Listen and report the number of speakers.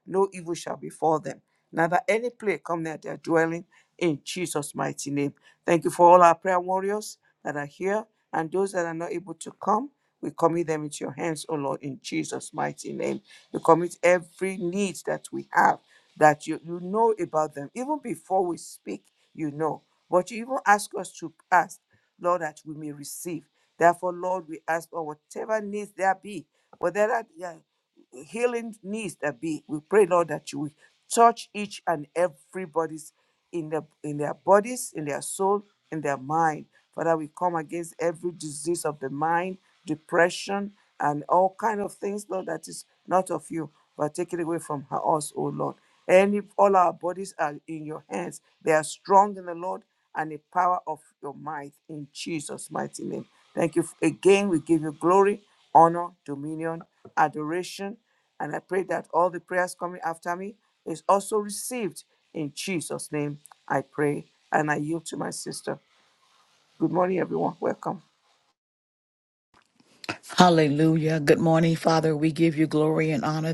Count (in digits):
2